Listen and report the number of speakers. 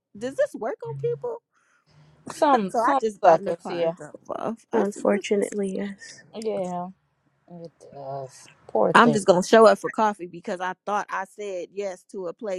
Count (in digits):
3